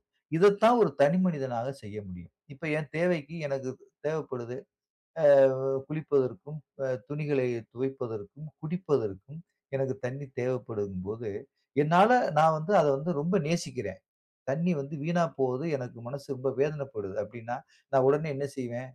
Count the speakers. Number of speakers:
1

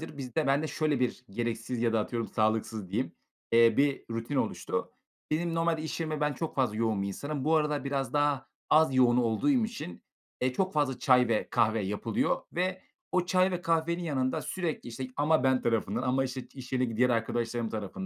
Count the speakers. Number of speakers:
1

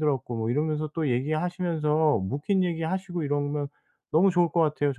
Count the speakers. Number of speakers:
1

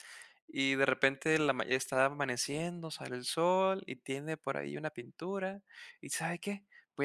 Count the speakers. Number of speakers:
1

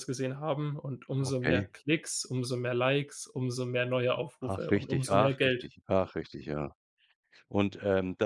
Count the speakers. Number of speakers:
2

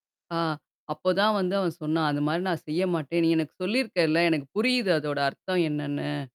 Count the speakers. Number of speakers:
1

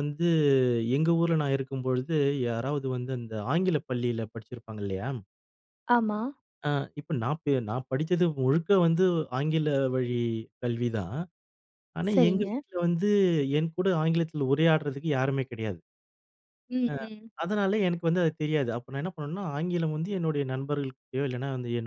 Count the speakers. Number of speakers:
2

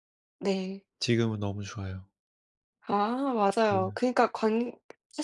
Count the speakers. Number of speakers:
2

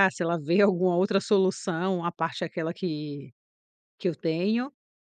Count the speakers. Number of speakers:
1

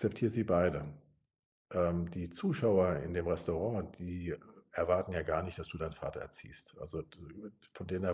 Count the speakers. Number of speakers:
1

